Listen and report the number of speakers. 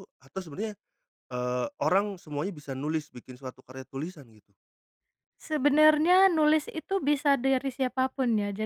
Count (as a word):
two